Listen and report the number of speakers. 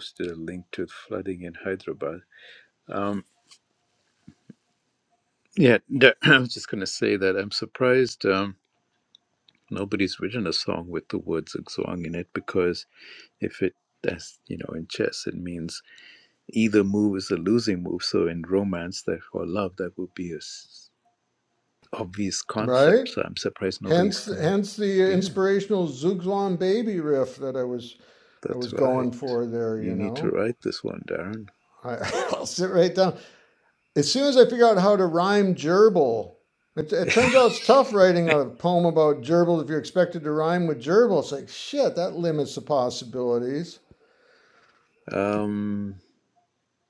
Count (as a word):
two